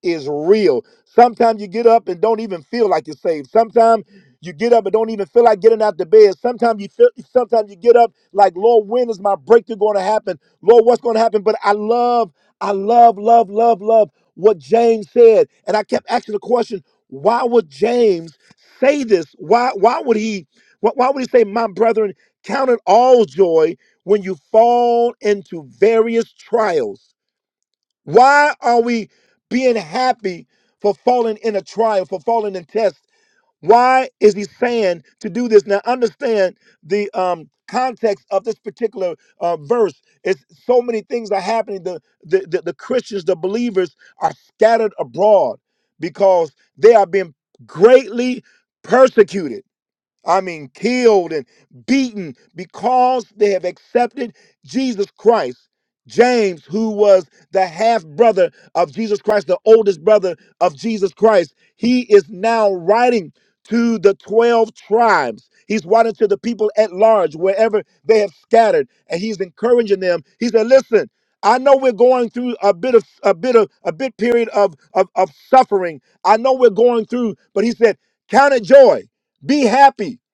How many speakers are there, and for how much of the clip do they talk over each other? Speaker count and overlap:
1, no overlap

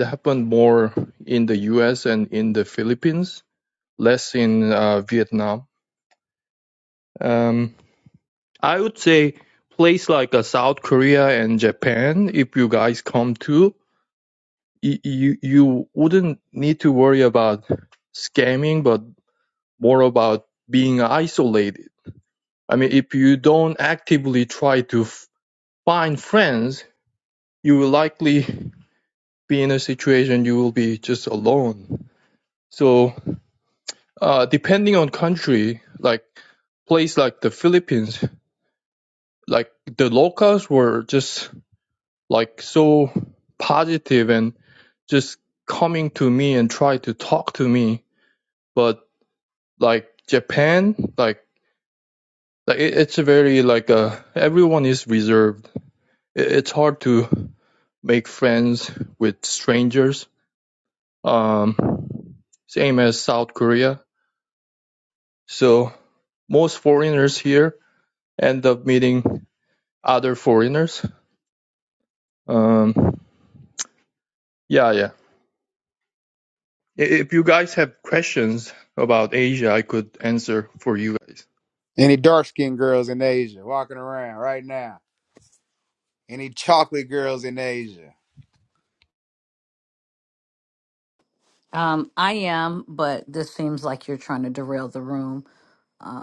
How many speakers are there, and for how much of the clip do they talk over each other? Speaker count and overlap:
3, no overlap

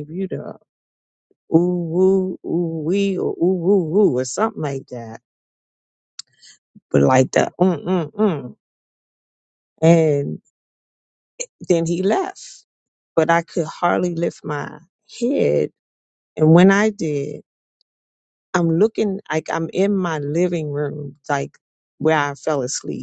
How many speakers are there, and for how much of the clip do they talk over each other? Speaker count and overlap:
1, no overlap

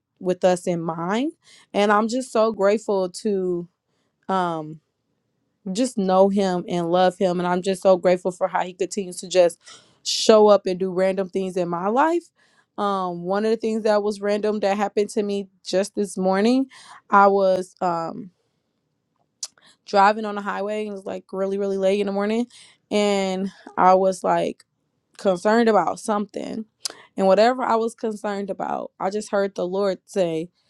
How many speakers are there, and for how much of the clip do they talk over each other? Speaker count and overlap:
1, no overlap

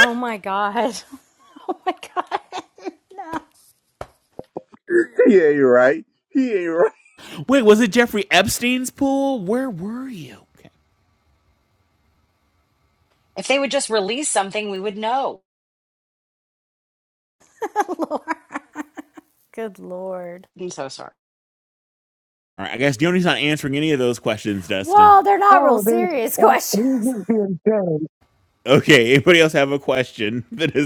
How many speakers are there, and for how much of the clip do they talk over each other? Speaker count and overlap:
5, about 6%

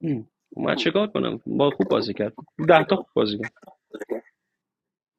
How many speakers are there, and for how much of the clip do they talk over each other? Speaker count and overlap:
1, no overlap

